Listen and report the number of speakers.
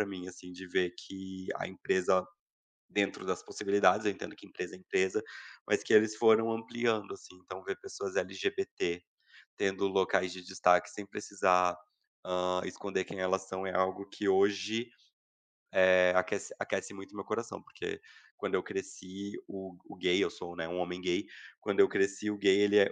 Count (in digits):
1